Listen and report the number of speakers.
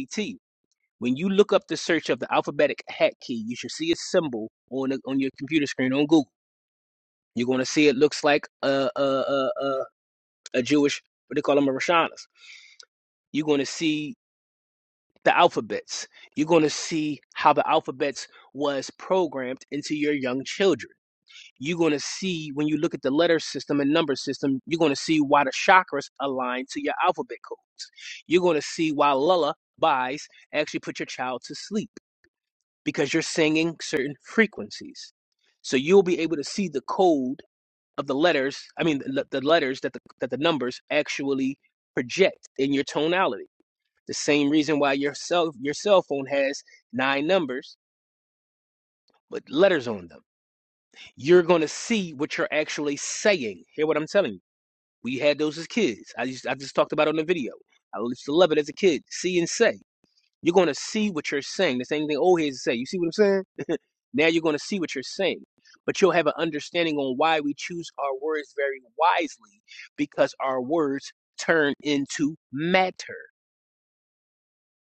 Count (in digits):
1